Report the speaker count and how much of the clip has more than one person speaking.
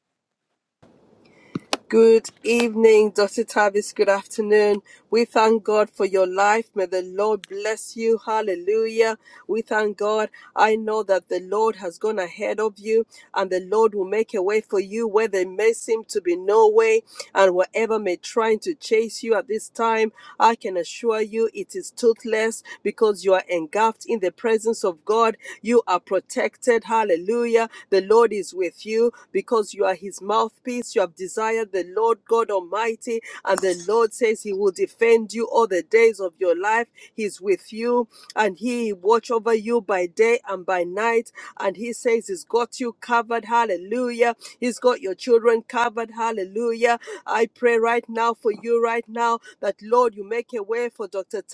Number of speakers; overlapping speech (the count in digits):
1, no overlap